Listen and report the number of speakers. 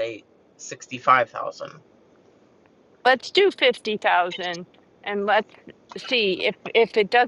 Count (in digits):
2